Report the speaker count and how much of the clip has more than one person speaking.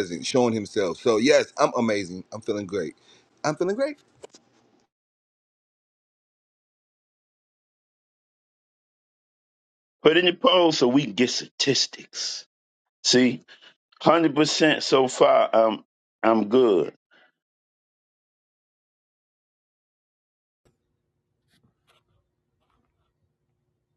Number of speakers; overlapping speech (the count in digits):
2, no overlap